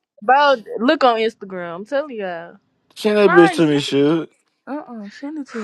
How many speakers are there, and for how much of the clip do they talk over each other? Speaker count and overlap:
three, about 12%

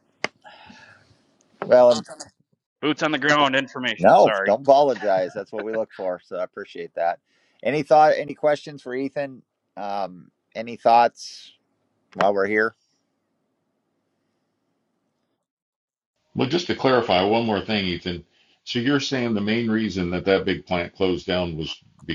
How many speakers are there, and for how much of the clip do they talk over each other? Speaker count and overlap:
three, about 2%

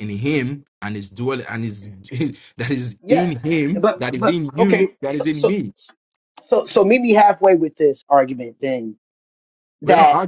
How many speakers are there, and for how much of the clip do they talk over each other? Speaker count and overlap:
two, about 23%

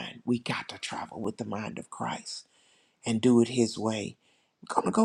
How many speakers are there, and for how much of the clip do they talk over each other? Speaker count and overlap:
one, no overlap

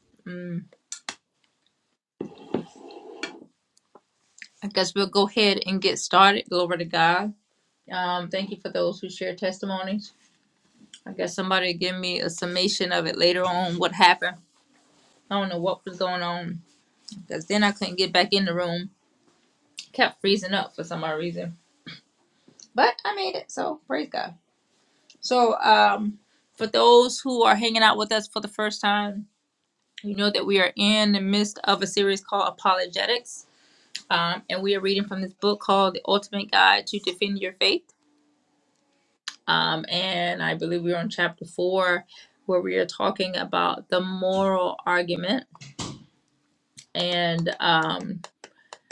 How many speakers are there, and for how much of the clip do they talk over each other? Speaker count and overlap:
one, no overlap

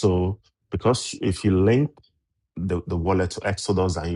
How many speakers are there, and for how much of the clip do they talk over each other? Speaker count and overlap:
one, no overlap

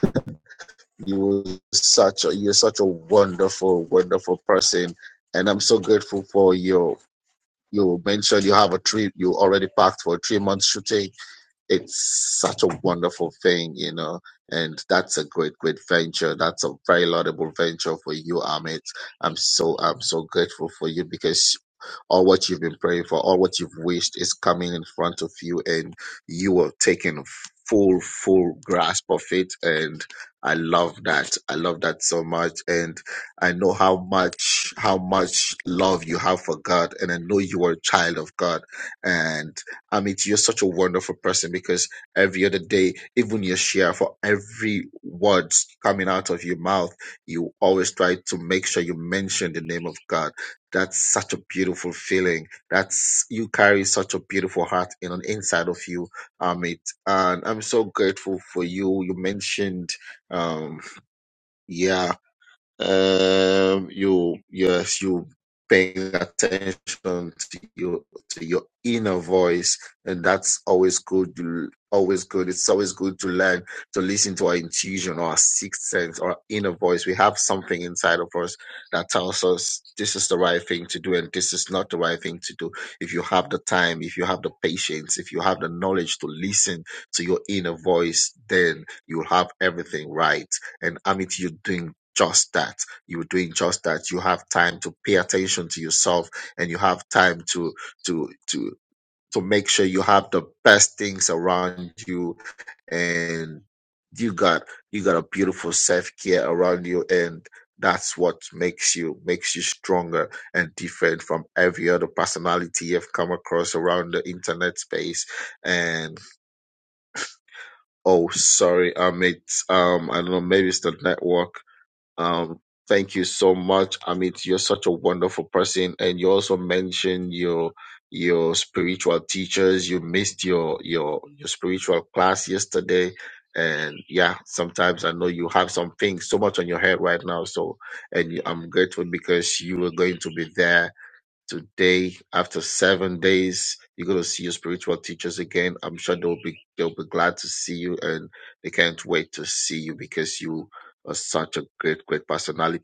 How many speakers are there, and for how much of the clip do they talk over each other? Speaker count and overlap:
one, no overlap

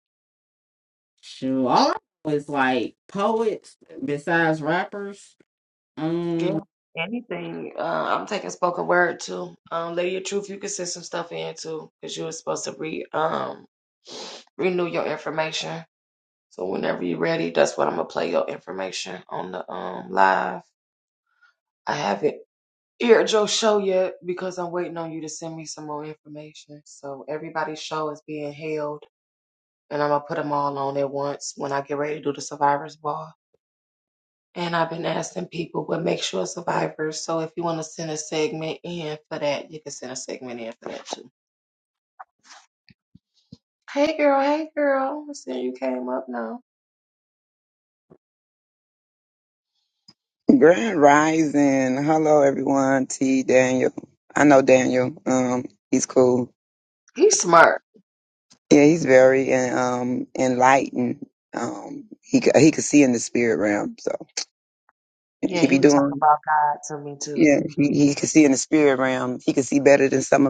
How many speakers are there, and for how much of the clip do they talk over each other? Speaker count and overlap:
three, about 2%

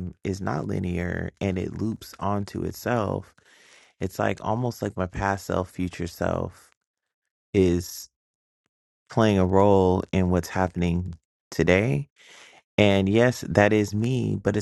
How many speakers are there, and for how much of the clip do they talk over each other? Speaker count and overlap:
one, no overlap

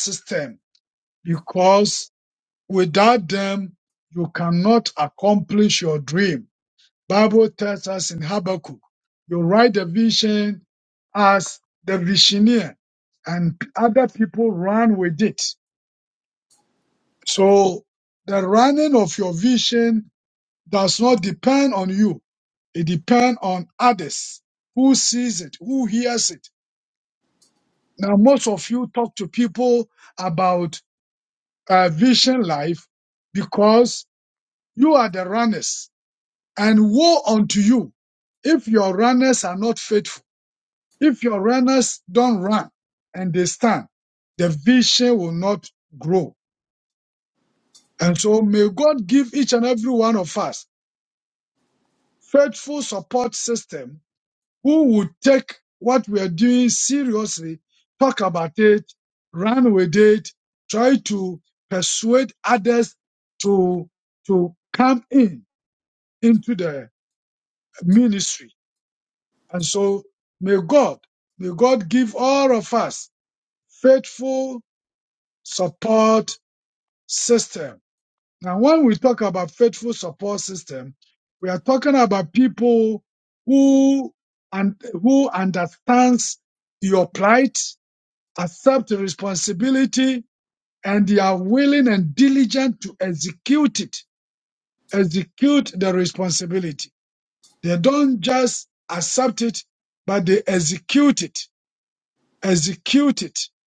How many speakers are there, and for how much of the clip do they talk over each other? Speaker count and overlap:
one, no overlap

